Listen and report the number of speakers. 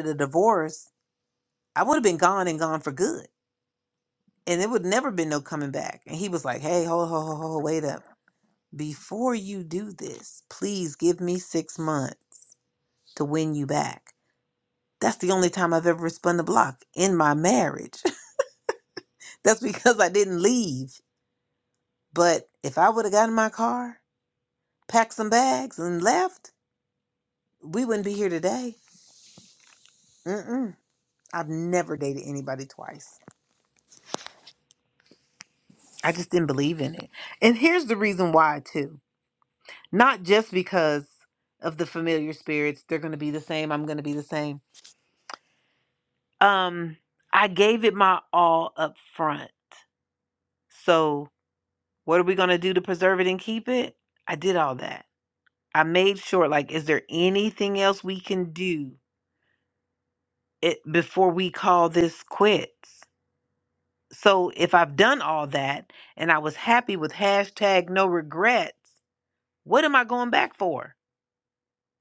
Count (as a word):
one